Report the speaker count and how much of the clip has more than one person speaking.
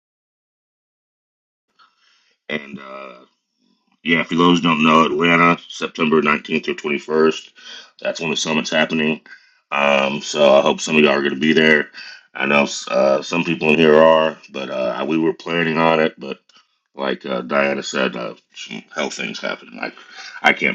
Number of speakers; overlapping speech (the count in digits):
1, no overlap